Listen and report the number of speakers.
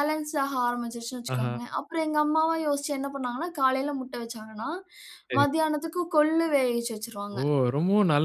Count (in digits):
2